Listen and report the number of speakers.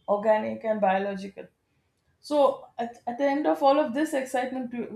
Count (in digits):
1